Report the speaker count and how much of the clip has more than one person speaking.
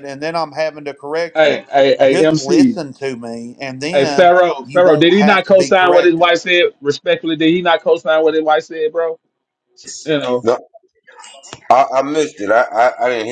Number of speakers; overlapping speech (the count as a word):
three, about 21%